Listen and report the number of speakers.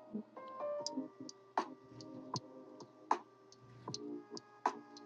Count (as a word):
zero